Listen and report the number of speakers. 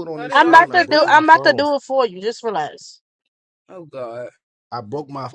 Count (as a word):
three